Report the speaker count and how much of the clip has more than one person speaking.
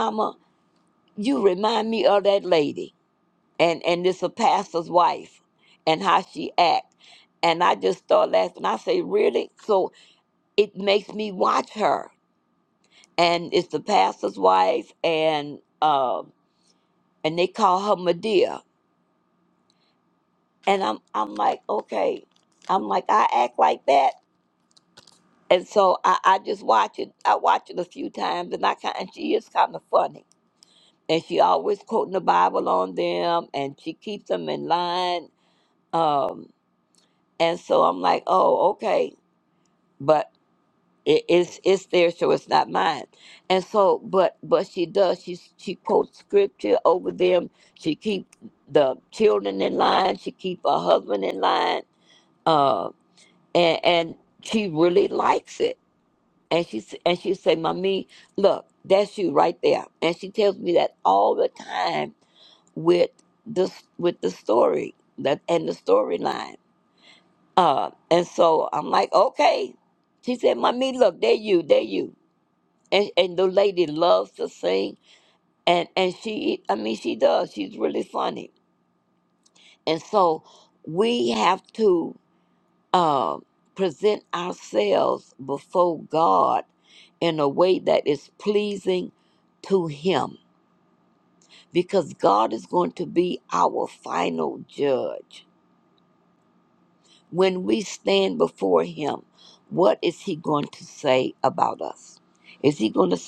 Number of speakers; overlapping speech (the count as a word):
one, no overlap